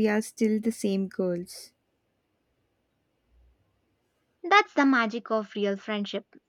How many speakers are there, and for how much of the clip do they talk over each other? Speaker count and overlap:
two, no overlap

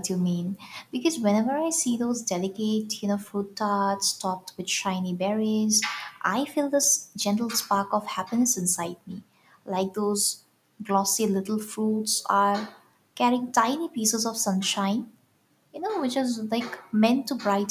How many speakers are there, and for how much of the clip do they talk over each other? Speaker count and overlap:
one, no overlap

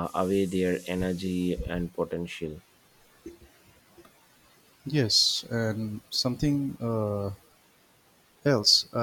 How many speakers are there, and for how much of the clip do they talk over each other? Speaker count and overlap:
two, no overlap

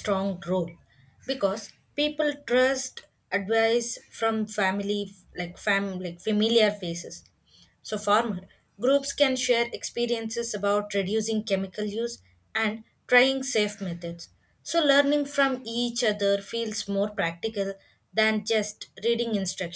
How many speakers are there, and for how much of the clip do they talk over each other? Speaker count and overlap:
one, no overlap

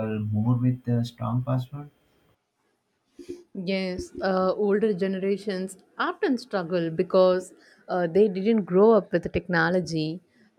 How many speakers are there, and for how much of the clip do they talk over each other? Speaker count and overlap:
two, no overlap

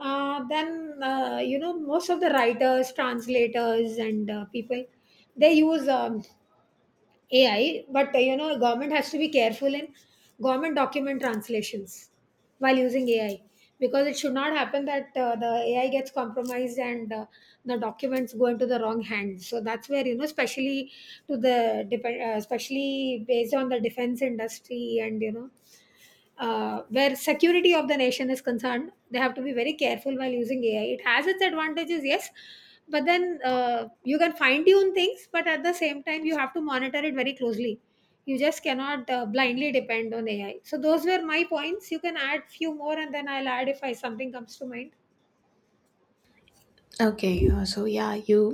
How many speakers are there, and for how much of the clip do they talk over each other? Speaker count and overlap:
two, no overlap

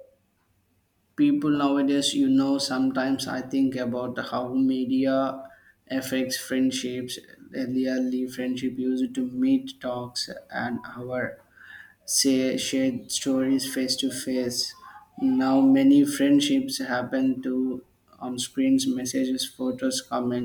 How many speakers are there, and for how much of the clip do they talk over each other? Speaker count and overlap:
one, no overlap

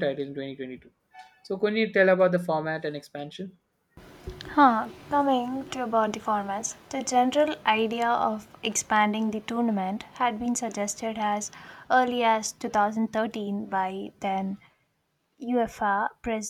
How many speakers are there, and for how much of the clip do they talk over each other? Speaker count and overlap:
two, no overlap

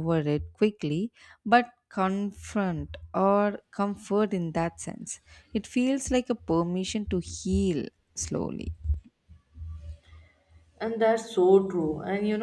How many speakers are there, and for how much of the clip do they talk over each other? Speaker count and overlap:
two, no overlap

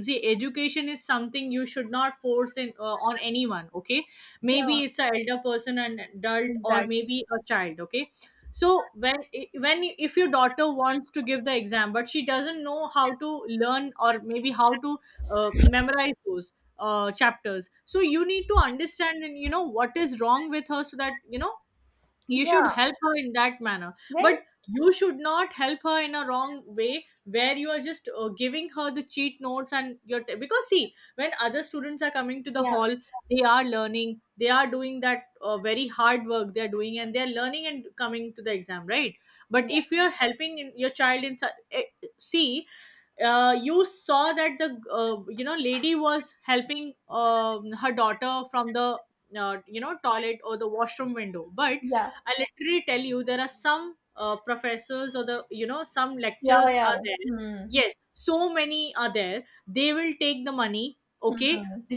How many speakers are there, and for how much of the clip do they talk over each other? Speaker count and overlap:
two, about 5%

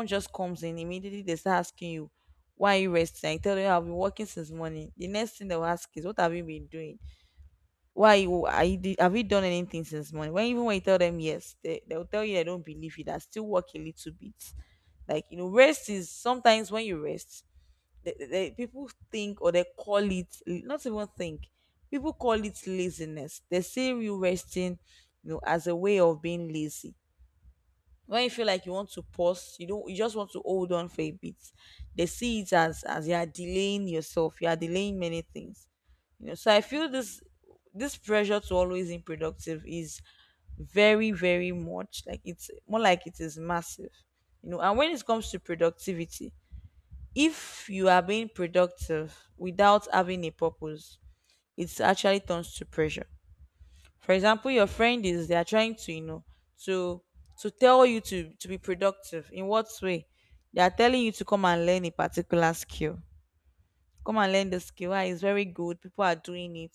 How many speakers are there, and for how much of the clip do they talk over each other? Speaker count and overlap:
one, no overlap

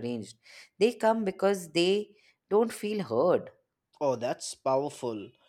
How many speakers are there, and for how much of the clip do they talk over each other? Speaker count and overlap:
two, no overlap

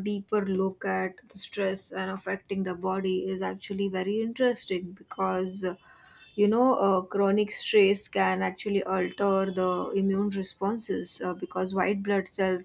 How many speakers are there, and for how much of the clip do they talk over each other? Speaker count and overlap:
one, no overlap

